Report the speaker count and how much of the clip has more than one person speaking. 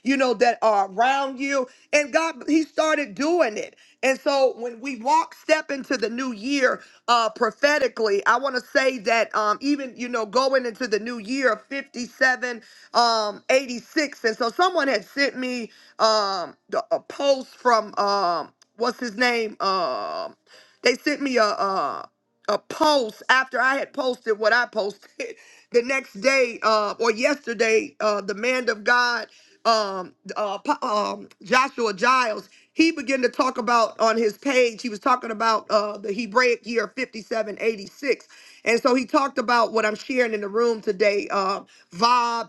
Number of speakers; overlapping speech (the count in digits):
1, no overlap